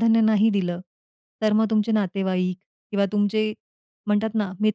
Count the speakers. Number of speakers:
one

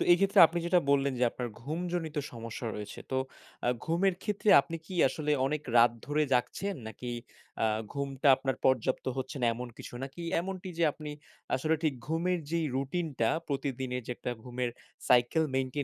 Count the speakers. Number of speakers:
one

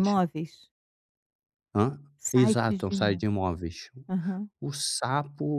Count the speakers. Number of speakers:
two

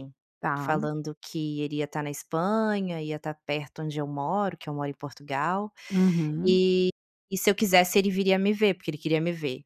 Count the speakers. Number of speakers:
two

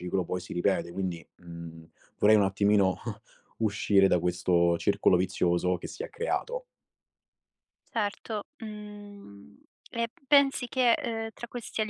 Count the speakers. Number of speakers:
two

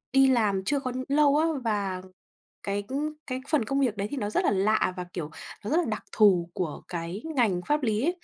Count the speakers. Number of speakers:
one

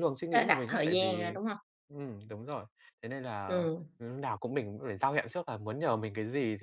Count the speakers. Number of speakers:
two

